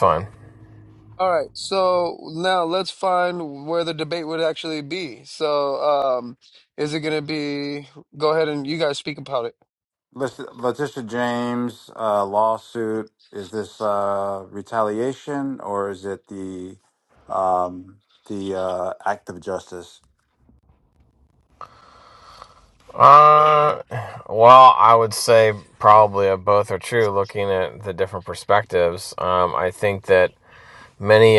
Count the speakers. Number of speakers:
3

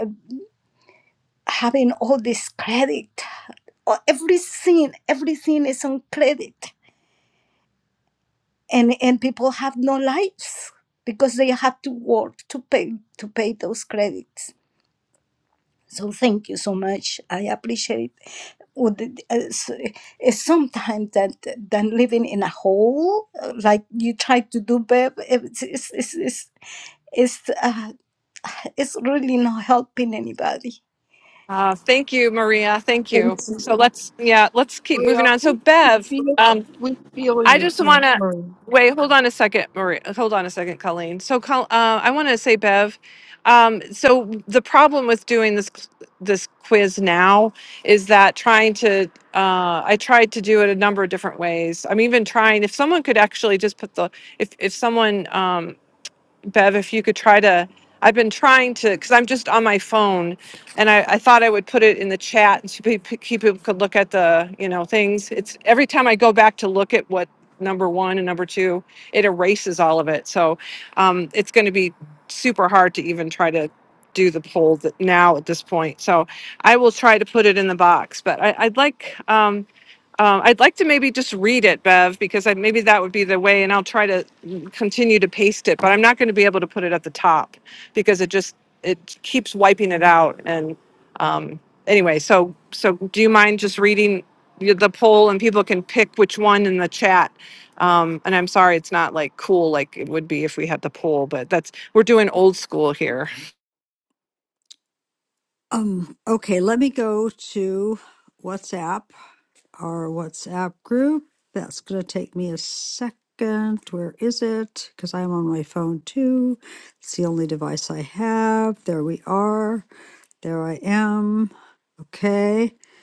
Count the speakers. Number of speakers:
4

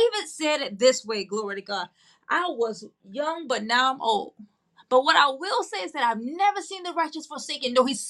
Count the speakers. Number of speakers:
1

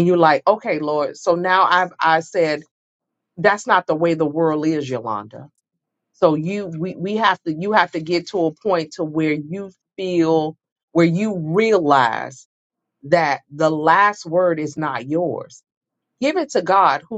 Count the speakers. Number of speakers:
1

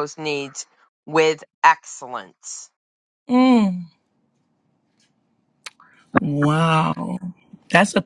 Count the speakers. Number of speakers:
2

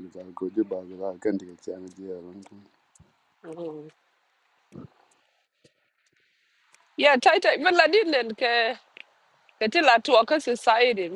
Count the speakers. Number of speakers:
2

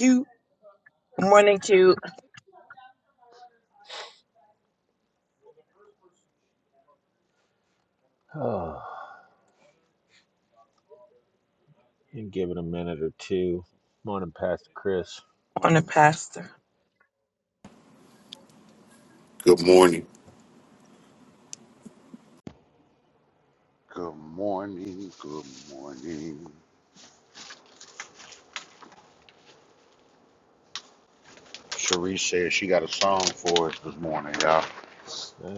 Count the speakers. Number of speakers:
3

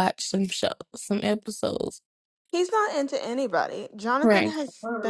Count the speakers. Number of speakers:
2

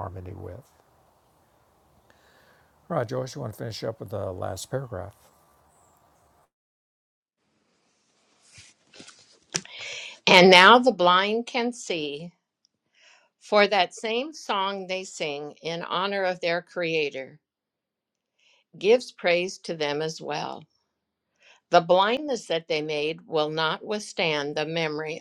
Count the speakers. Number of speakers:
2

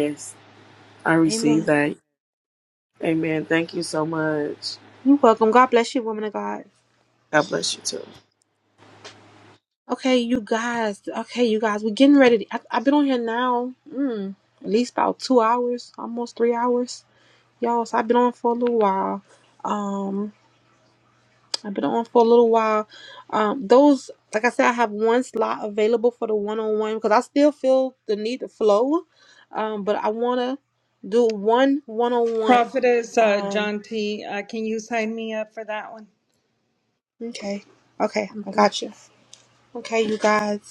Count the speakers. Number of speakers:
3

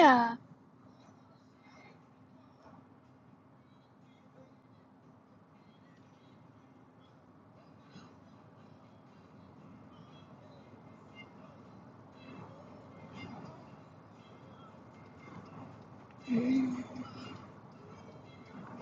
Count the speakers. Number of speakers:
1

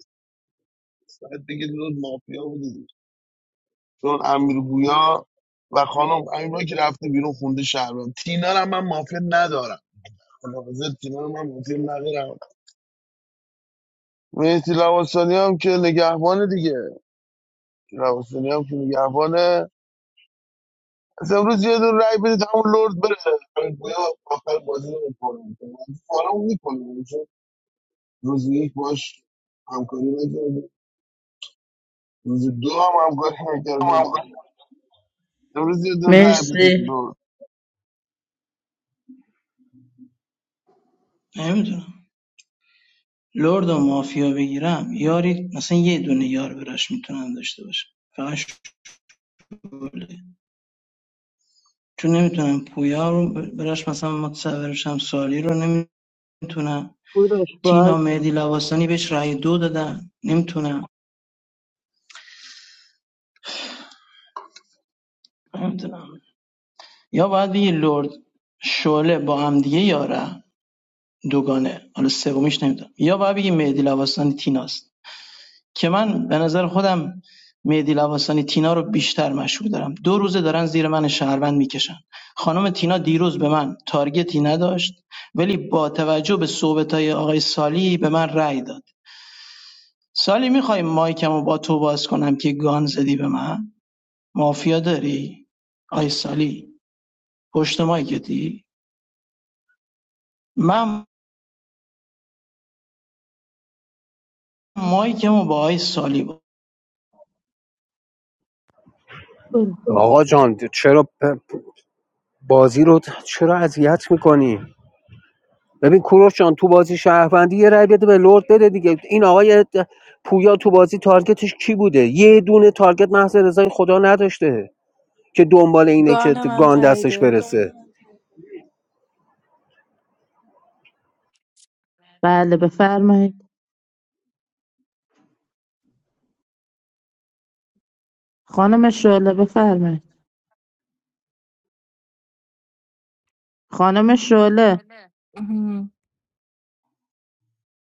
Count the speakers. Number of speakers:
5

